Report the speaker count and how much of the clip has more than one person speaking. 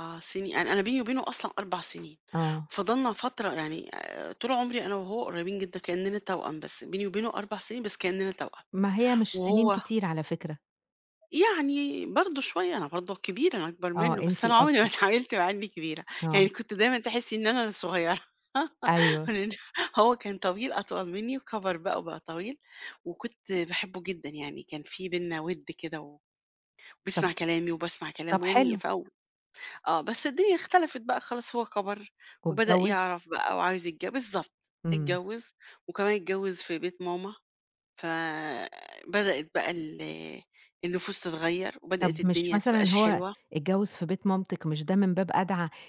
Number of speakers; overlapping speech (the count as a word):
two, about 9%